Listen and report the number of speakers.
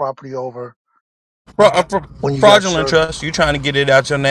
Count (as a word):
two